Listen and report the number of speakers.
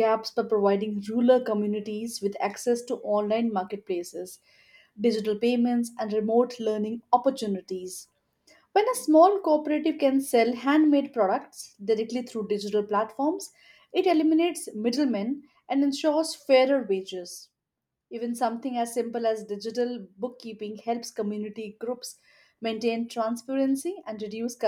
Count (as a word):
one